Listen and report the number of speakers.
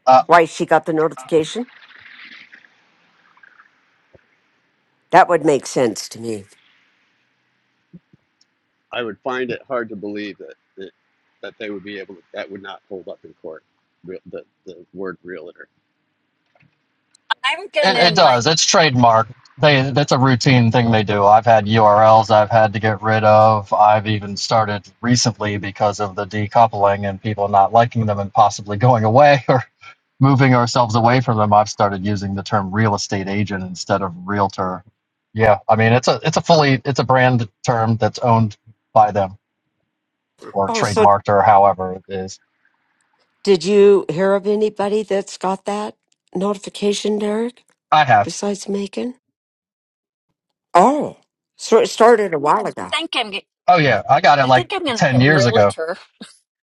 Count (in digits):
4